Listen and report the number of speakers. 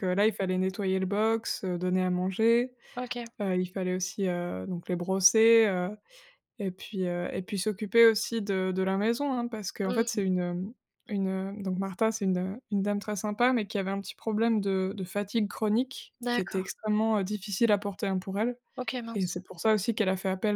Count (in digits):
2